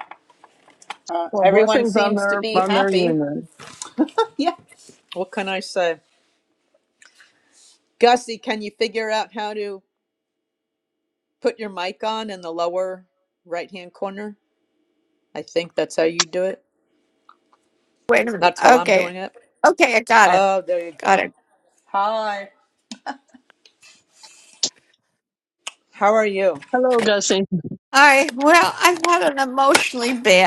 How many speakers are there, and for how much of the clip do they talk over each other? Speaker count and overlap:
3, about 10%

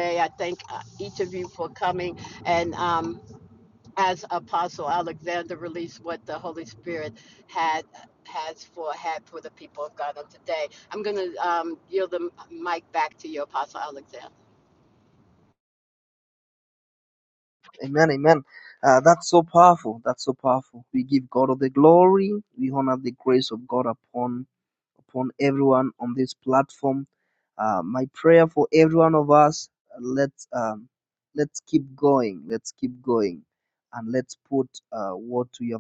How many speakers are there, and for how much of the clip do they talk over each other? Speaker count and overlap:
2, no overlap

